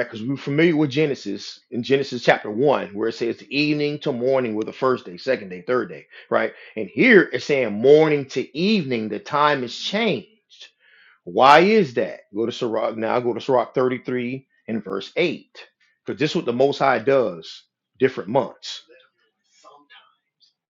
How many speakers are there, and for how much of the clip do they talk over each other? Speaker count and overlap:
one, no overlap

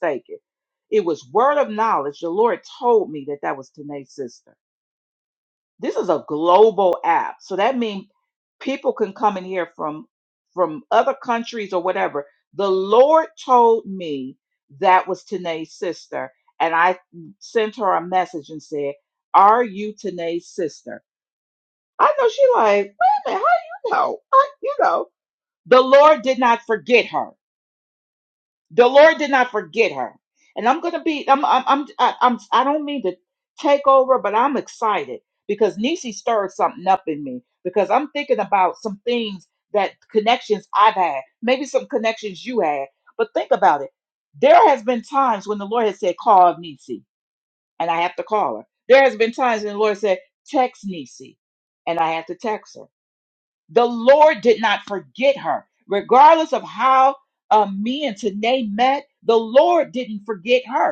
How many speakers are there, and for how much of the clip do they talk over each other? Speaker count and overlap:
one, no overlap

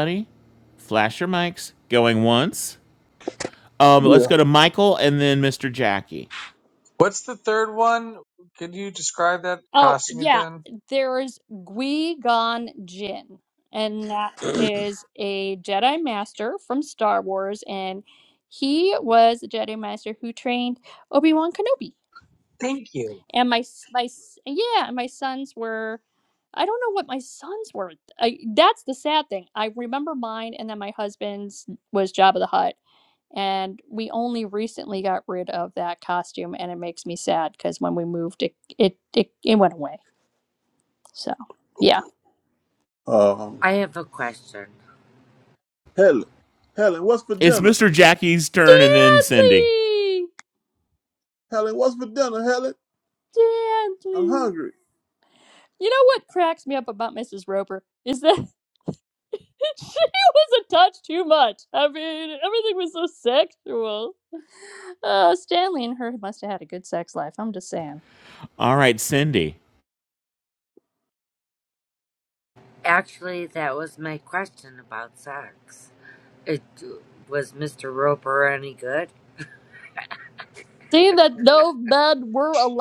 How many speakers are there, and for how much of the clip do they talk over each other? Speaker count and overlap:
five, about 3%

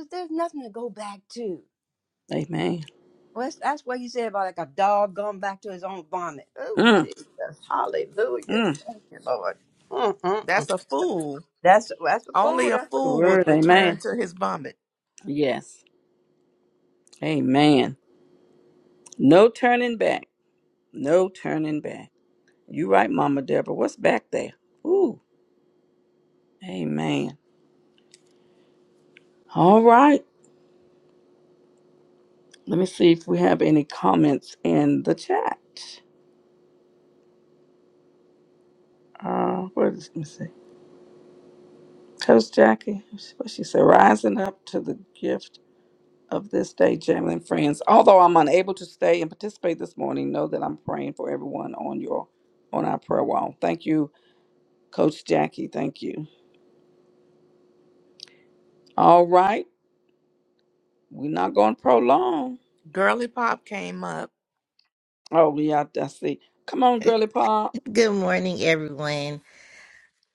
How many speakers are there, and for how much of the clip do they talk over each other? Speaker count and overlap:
four, about 4%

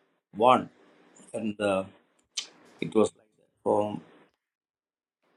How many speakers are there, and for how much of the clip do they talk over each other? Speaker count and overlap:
one, no overlap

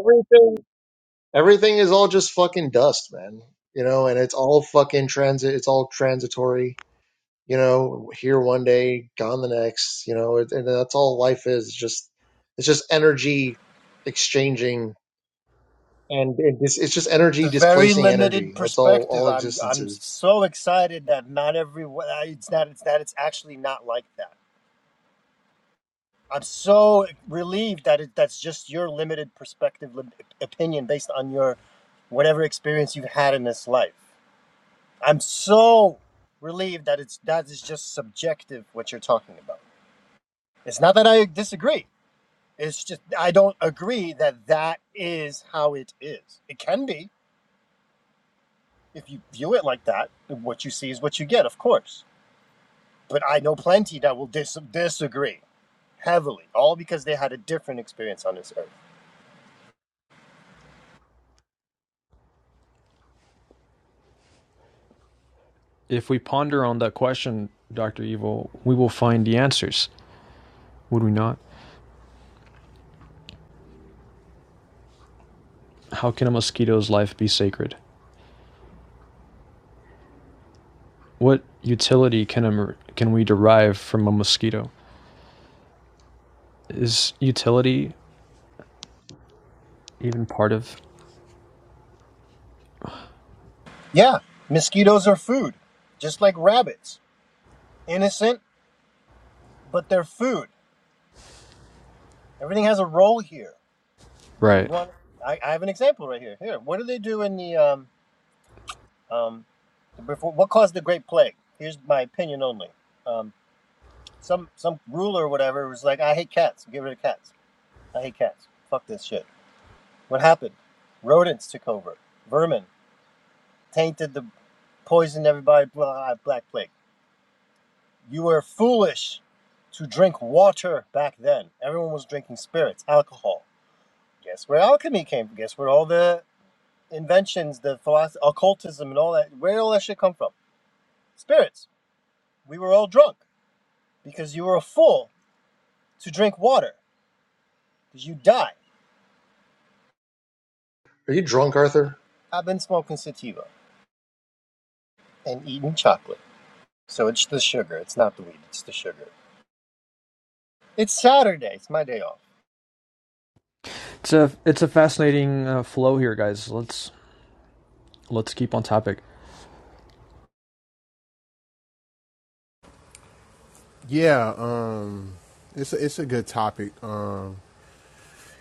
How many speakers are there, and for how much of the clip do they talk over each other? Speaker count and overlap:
four, about 1%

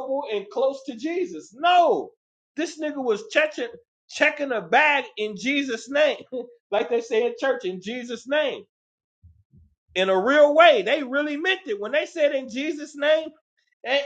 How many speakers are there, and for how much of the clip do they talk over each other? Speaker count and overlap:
one, no overlap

